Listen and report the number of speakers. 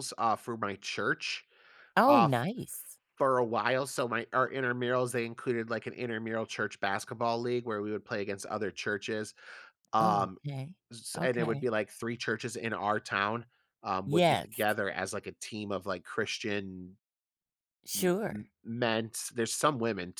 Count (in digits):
2